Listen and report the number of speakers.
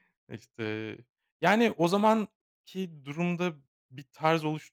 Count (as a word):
one